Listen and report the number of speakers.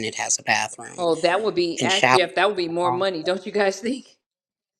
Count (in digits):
2